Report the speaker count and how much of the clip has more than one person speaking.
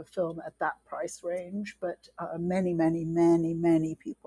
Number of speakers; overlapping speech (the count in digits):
1, no overlap